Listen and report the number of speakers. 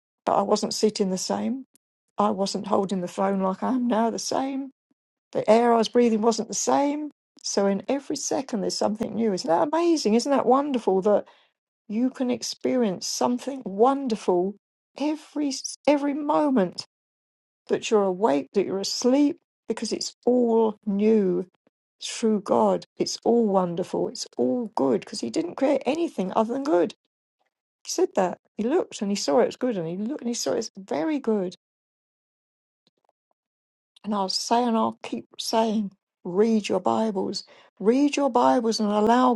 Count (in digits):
1